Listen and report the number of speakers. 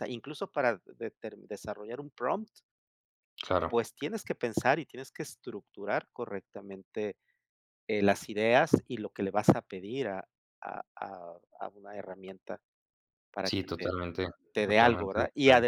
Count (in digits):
2